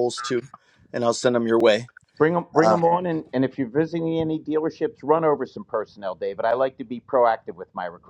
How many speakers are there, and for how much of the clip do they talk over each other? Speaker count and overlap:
two, about 3%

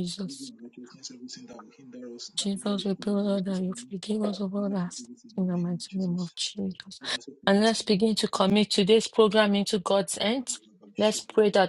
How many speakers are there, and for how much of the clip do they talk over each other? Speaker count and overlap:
two, about 29%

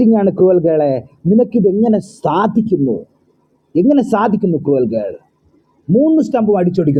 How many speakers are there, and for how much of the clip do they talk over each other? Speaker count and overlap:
one, no overlap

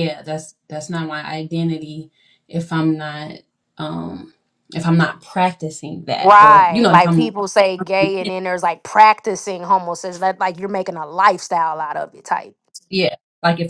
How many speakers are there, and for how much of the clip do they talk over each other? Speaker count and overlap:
two, about 8%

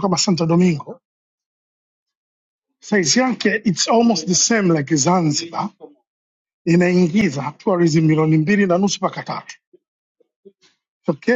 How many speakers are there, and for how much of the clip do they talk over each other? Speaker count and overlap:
one, no overlap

